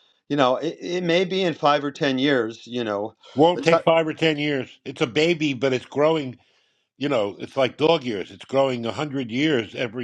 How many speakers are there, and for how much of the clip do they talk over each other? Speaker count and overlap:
2, about 2%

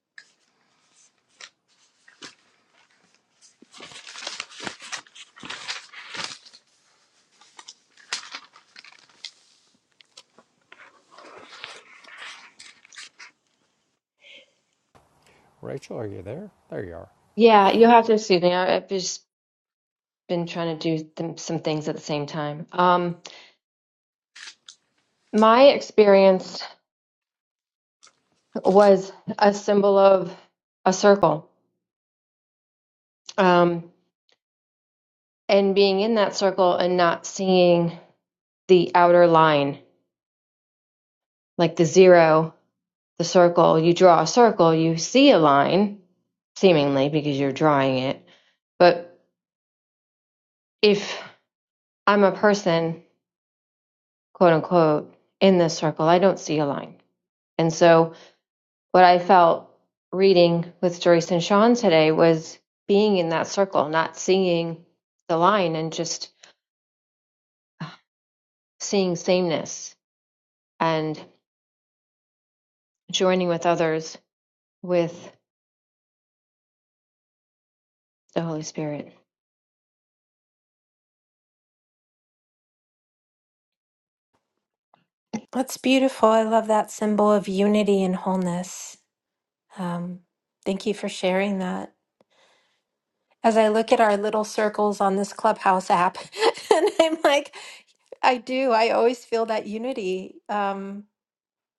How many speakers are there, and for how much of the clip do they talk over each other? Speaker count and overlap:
3, no overlap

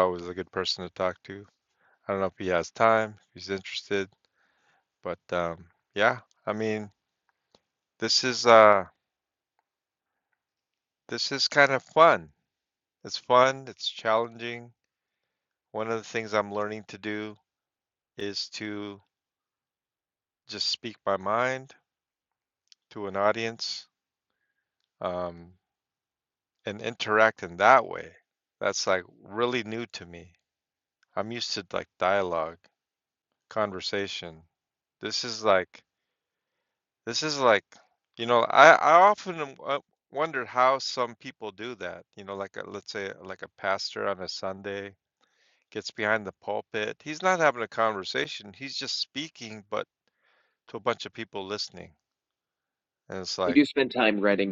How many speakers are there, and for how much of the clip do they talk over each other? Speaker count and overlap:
2, under 1%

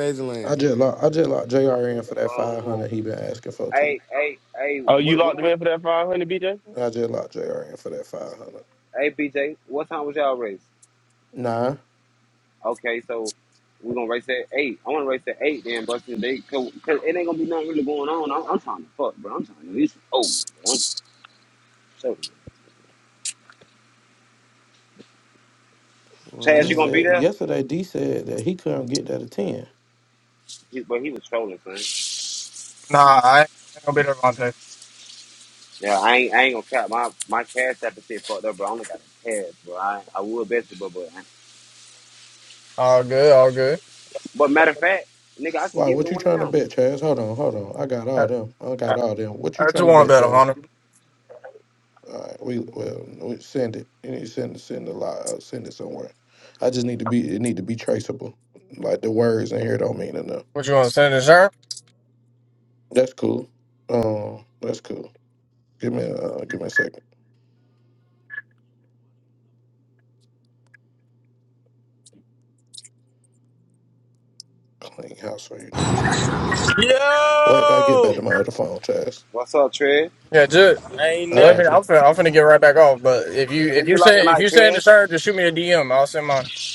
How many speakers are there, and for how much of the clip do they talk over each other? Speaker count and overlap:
6, about 7%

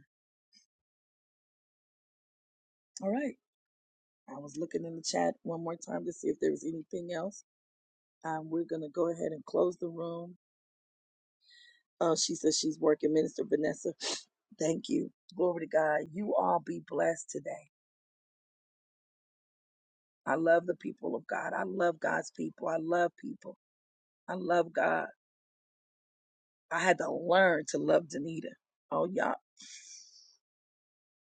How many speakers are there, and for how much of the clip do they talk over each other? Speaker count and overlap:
1, no overlap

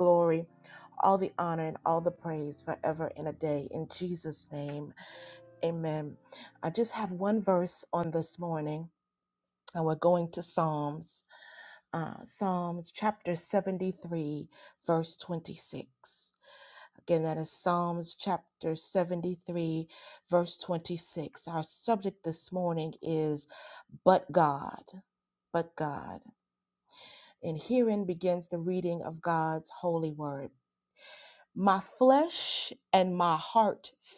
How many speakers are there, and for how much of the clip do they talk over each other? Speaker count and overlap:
1, no overlap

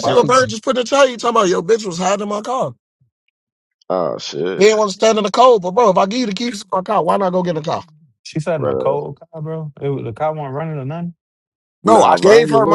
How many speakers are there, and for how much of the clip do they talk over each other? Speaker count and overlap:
3, about 14%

